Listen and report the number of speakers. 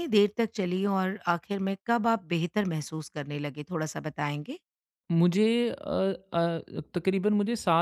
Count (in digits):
2